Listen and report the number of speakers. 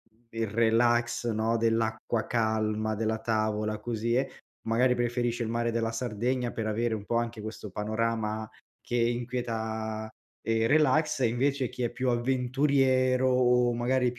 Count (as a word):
one